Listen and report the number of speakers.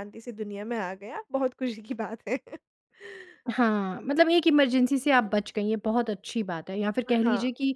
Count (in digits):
2